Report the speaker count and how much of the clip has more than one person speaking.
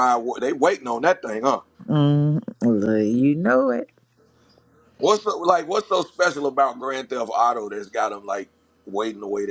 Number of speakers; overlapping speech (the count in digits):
2, no overlap